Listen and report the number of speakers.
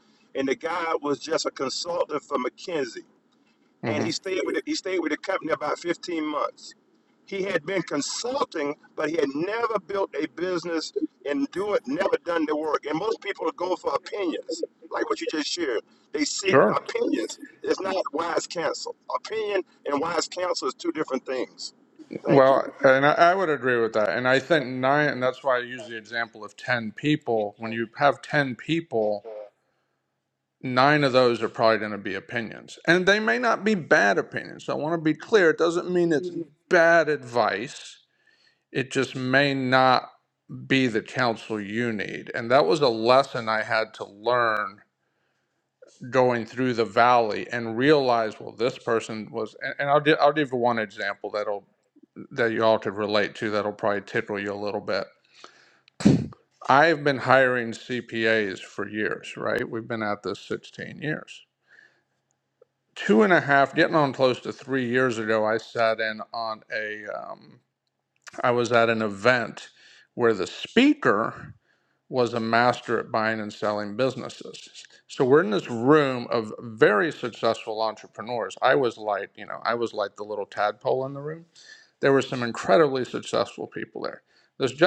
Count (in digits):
2